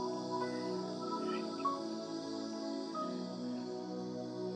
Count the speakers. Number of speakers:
0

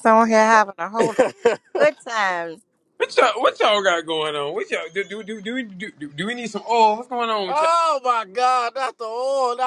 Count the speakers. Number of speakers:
3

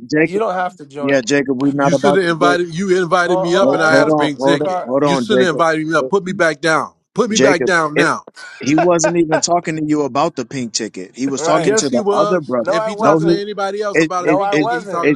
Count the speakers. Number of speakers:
3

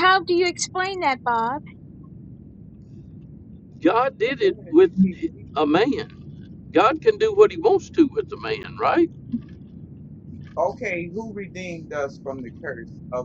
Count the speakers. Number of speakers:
3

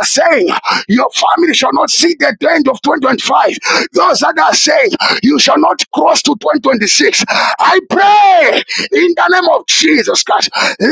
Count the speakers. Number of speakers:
1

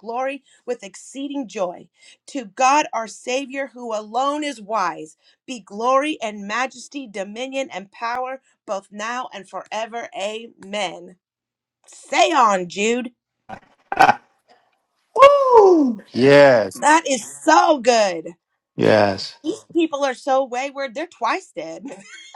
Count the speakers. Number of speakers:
2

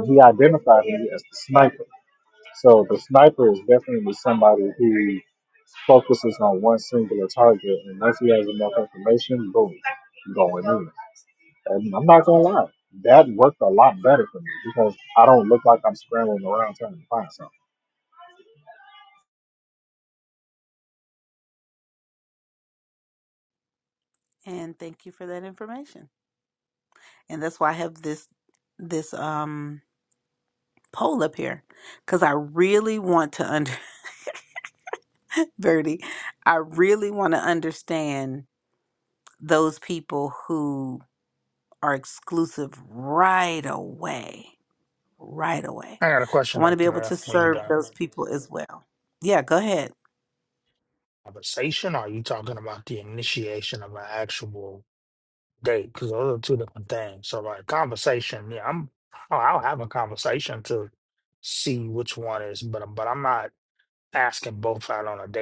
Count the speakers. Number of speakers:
3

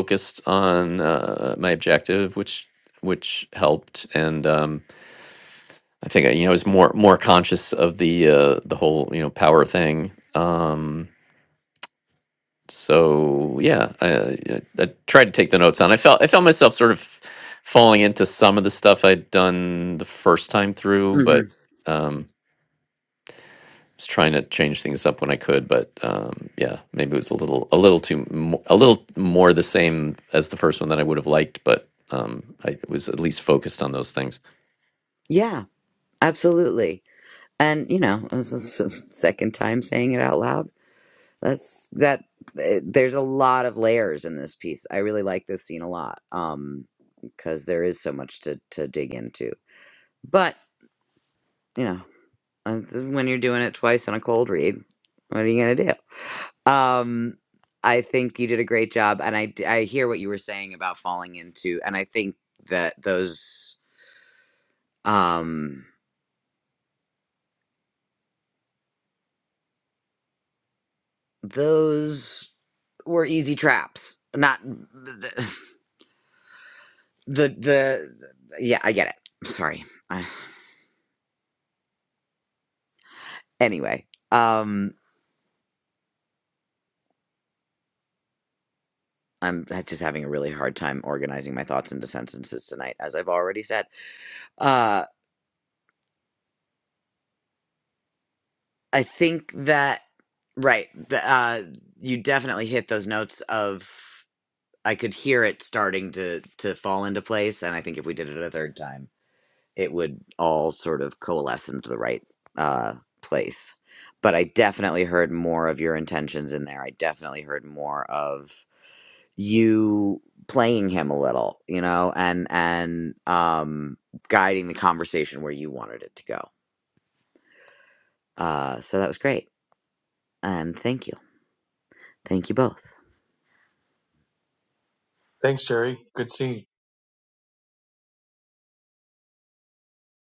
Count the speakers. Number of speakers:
3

